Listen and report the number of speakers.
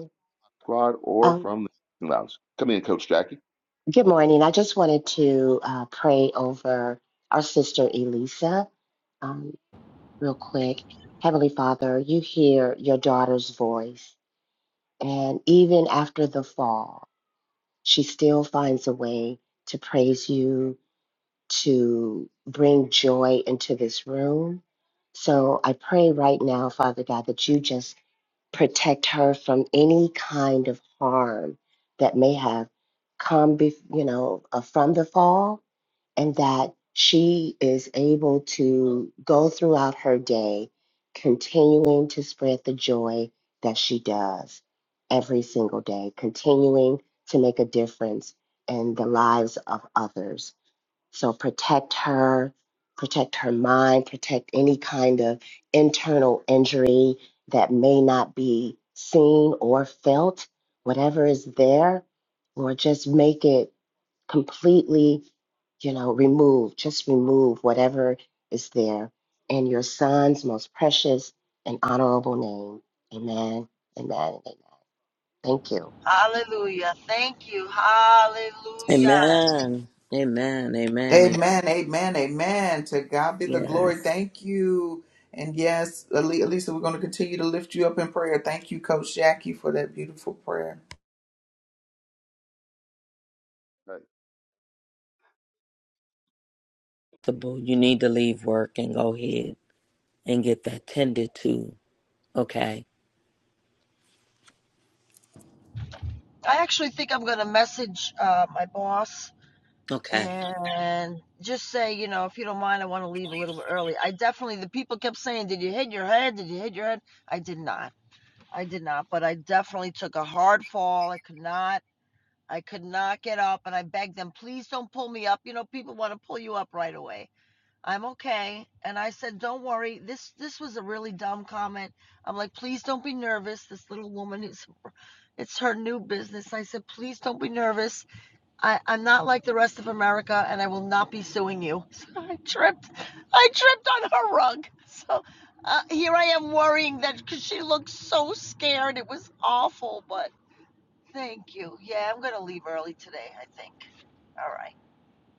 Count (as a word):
five